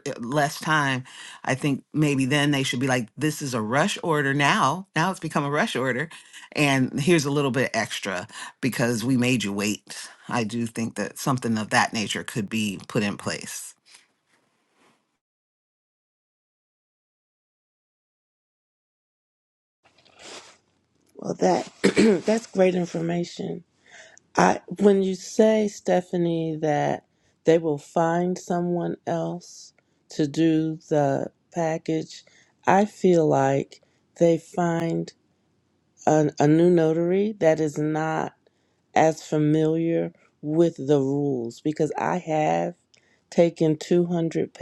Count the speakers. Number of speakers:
2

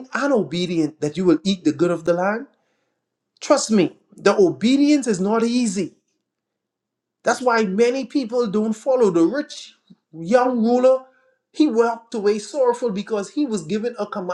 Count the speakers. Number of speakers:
1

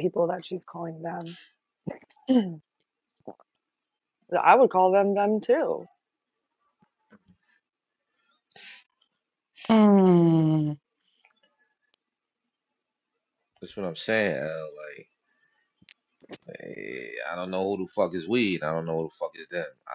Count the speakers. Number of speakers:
3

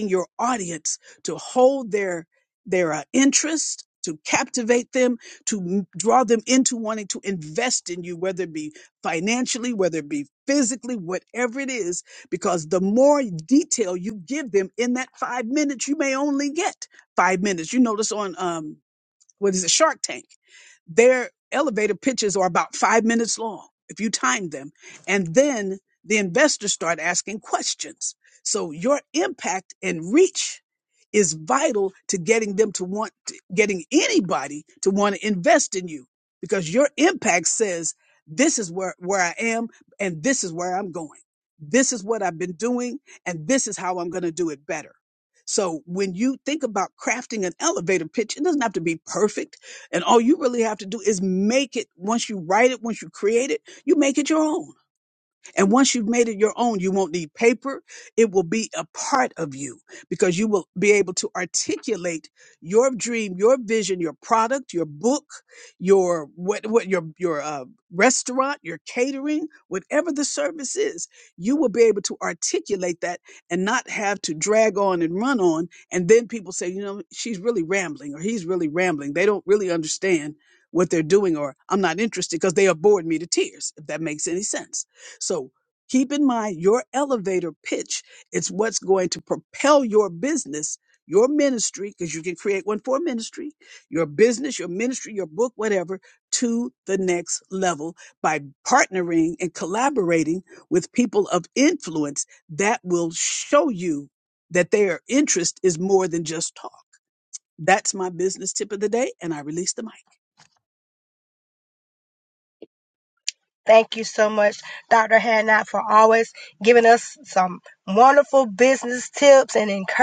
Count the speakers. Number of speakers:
2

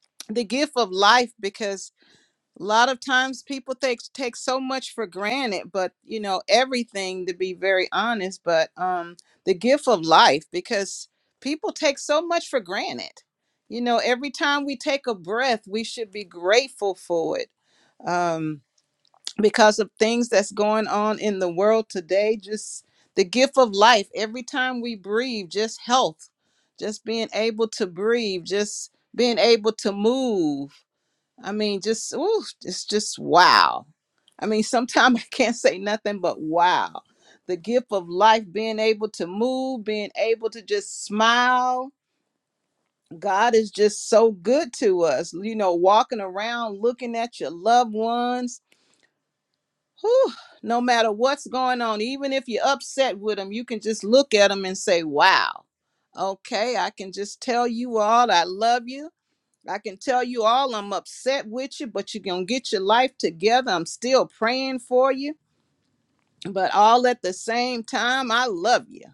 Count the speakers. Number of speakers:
1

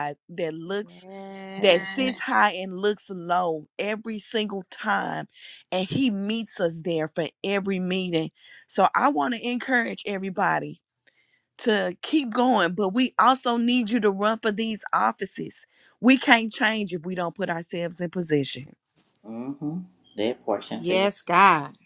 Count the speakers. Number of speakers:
3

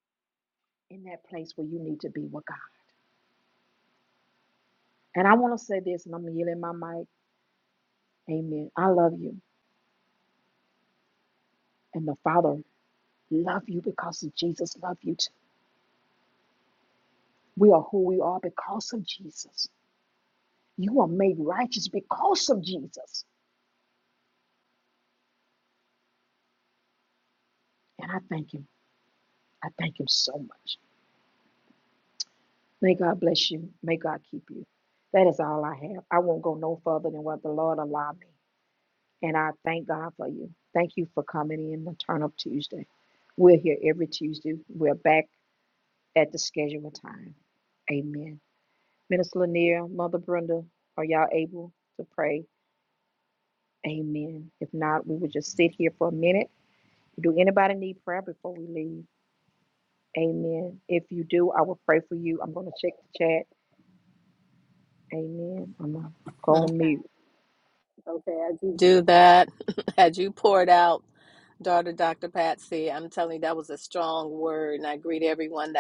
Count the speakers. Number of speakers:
2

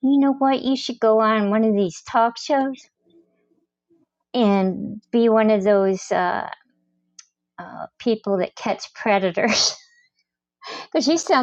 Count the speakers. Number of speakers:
1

